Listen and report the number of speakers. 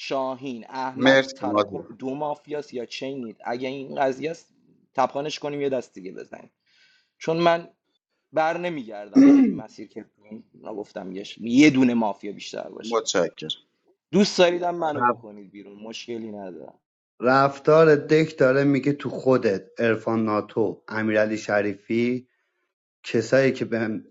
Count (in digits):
3